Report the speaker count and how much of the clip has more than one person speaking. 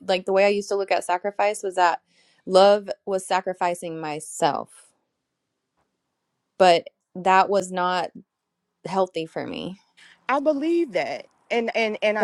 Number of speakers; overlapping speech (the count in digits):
2, under 1%